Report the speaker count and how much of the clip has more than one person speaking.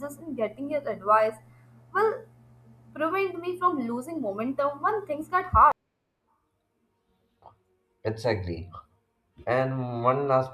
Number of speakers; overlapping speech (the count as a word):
two, no overlap